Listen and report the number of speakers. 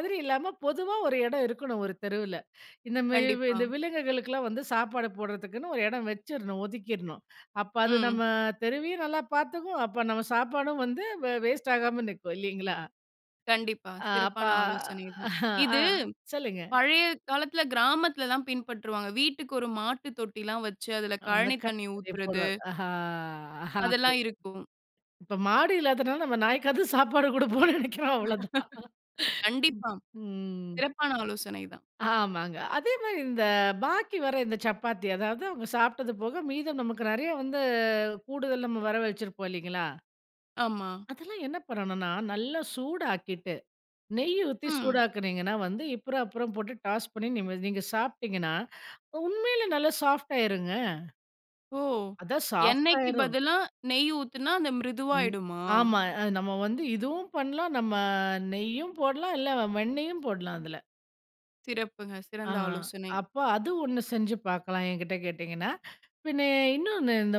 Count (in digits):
2